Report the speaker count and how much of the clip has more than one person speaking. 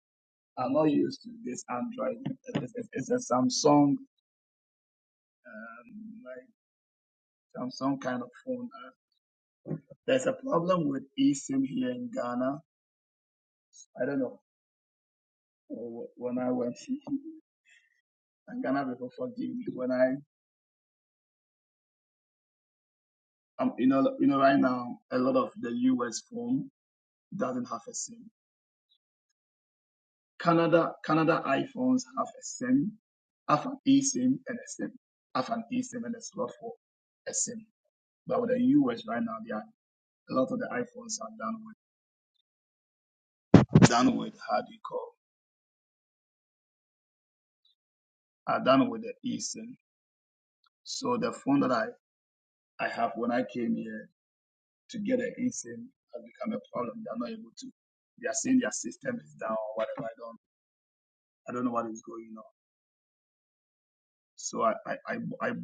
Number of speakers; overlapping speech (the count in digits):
1, no overlap